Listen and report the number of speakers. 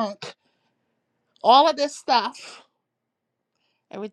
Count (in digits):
1